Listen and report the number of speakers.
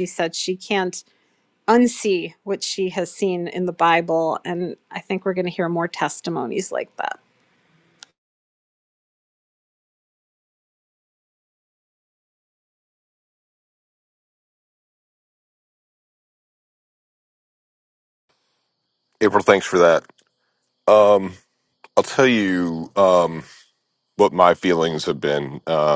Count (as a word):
two